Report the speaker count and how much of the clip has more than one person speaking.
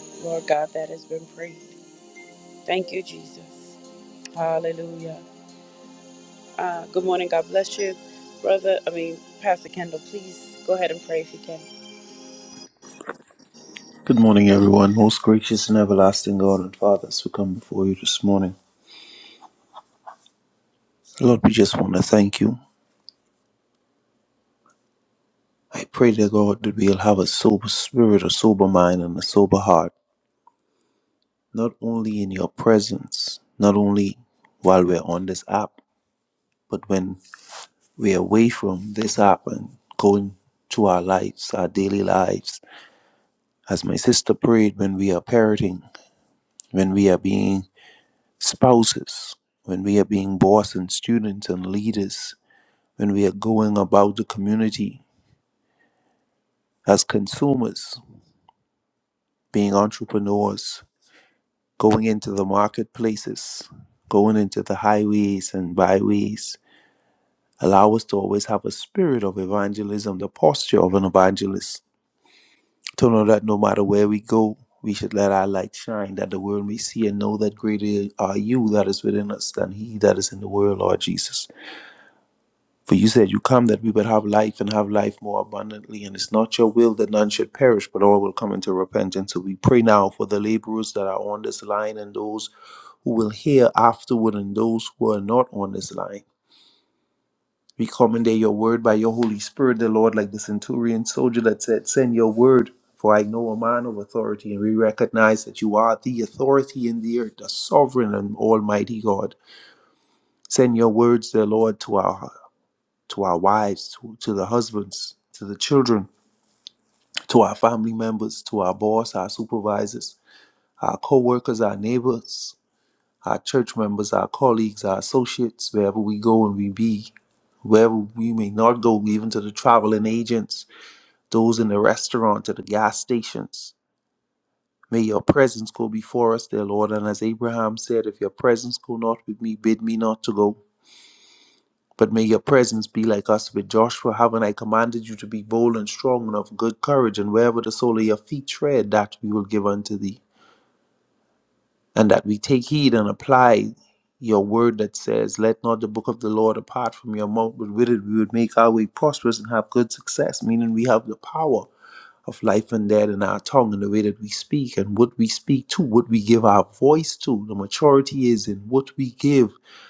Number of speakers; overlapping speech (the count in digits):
2, no overlap